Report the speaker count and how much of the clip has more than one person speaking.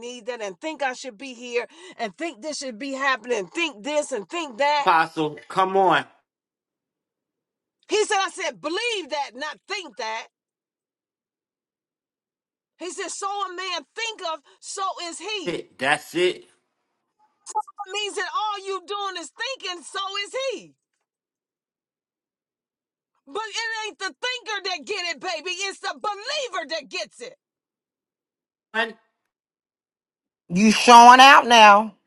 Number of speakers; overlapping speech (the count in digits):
3, under 1%